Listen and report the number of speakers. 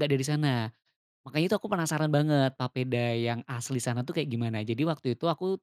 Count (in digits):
1